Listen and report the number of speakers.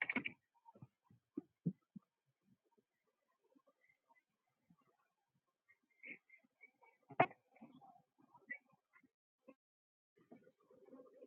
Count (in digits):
0